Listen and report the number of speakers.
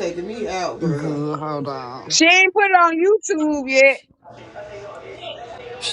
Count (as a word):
three